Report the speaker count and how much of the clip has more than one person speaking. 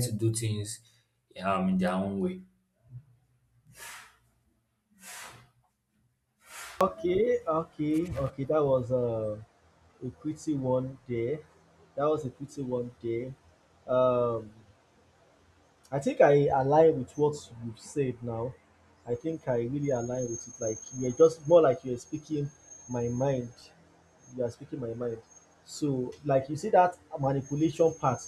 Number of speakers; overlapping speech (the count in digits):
2, no overlap